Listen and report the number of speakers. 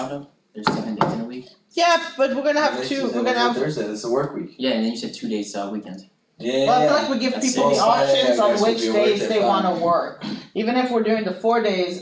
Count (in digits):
3